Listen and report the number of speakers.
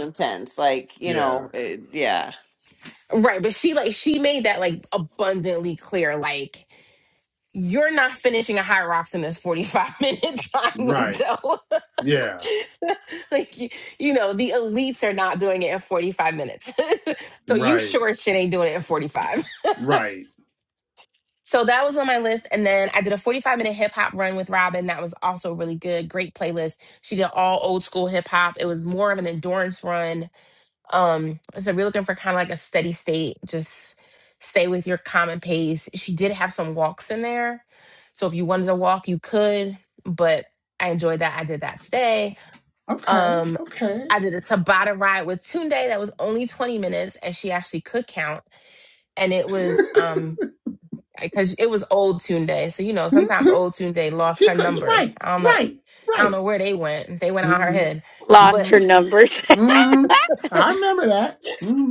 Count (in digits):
4